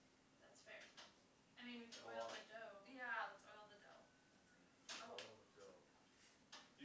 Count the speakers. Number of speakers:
three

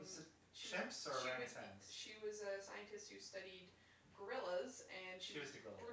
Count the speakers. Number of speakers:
two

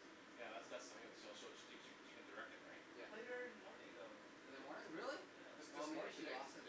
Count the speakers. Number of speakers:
three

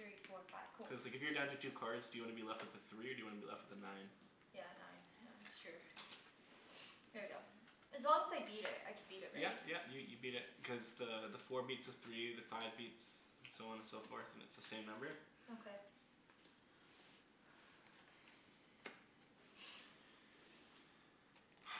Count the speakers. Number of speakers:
two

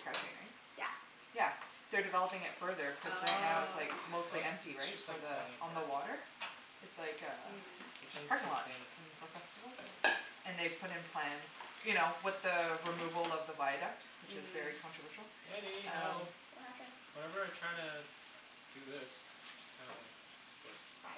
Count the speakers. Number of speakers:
three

